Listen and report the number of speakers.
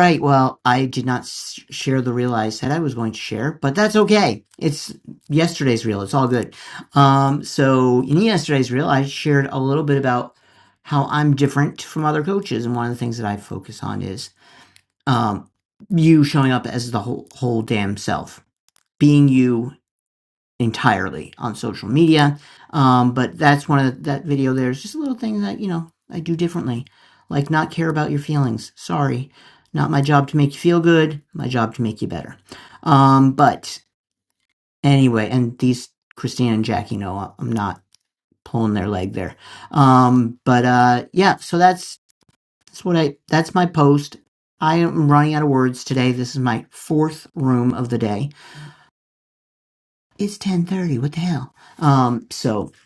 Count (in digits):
1